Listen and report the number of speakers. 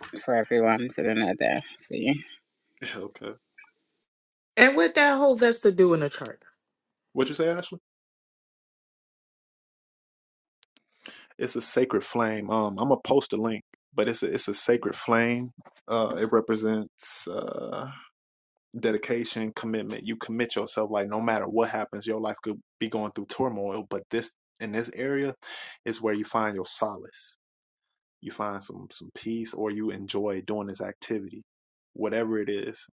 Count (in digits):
3